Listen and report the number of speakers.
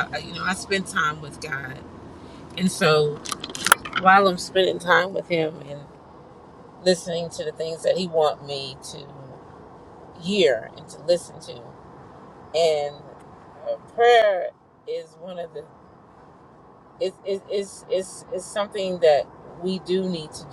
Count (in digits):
1